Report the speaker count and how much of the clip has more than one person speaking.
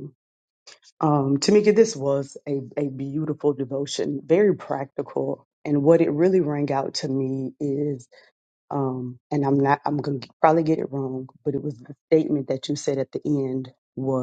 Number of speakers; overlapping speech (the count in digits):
1, no overlap